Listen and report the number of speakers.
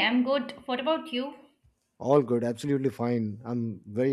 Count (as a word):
two